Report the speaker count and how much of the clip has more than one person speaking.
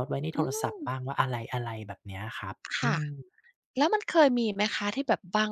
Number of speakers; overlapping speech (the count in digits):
2, about 15%